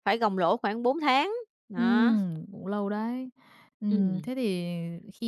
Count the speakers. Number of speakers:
2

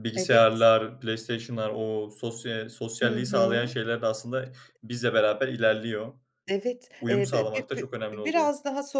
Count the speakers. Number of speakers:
2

